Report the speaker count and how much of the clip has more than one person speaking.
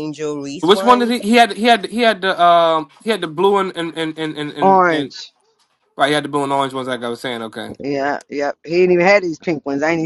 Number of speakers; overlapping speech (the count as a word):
three, about 10%